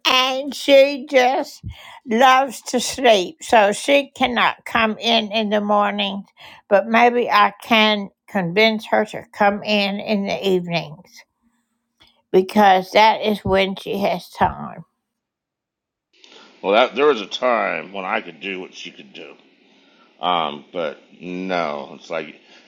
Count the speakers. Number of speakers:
2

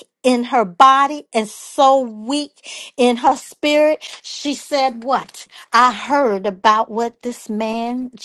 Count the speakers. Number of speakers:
1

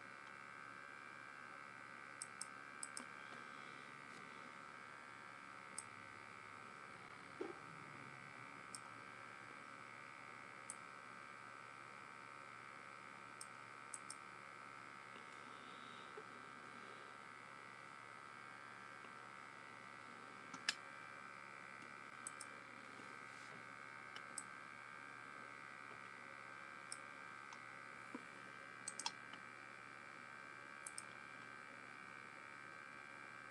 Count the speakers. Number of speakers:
0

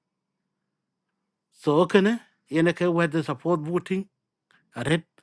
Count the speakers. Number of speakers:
1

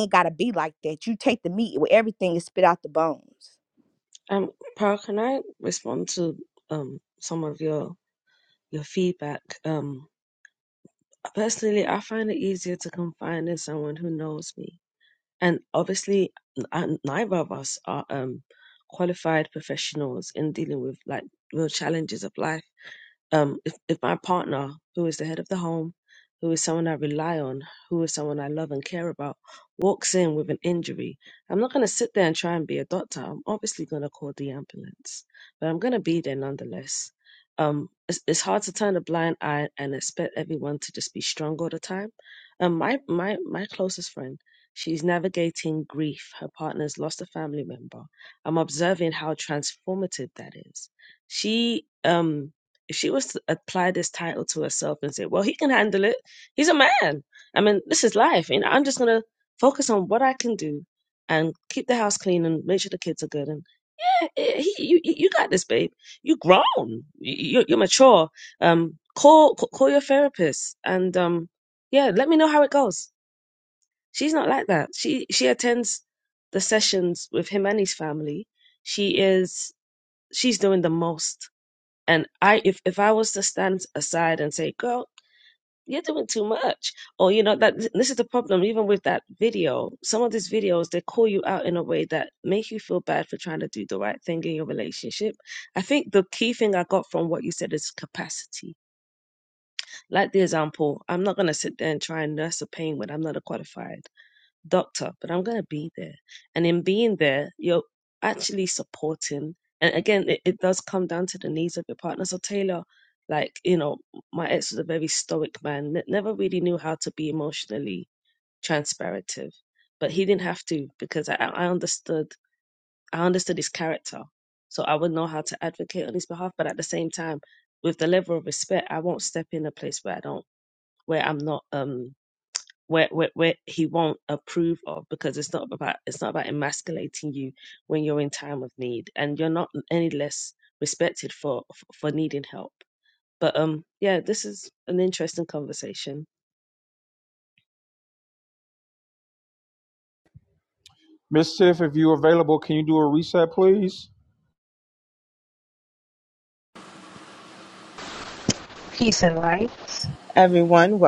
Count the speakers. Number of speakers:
4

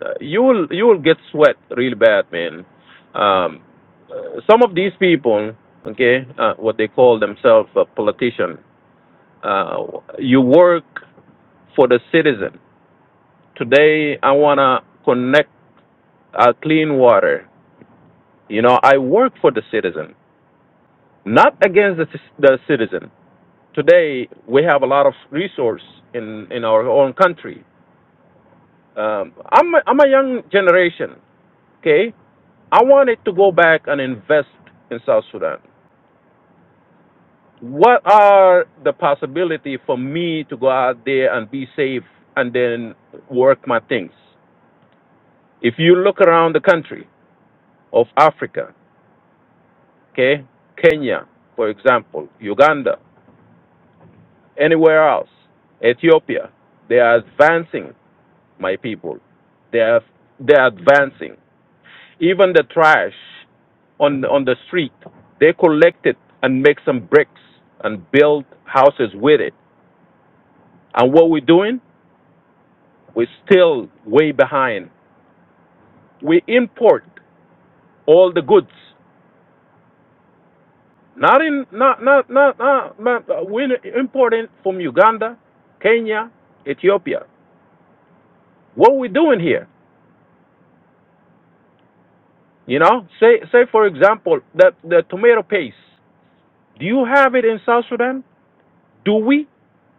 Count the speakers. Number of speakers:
1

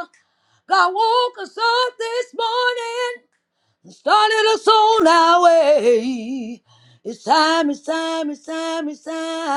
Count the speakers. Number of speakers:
1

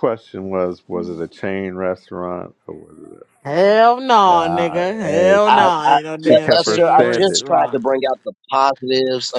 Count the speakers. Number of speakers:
3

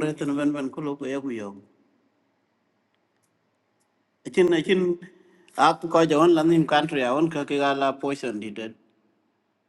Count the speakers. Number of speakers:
1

